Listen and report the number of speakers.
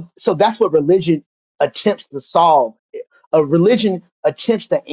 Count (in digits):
1